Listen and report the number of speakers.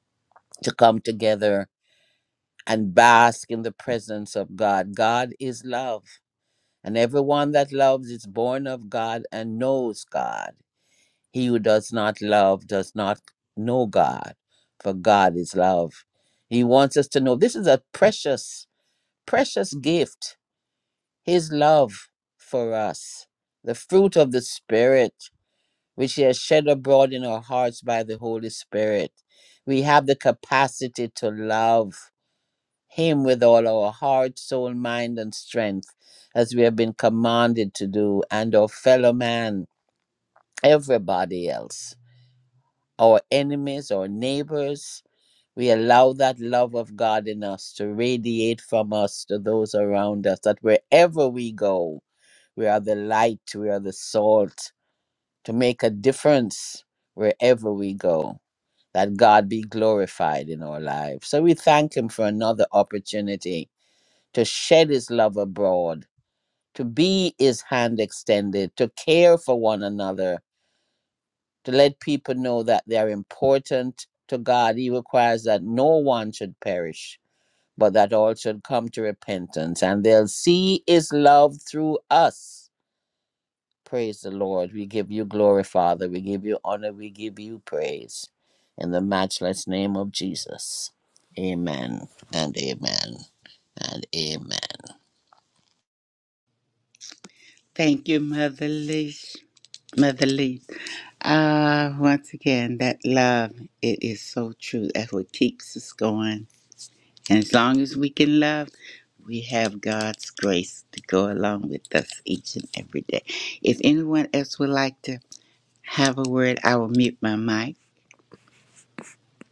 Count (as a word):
two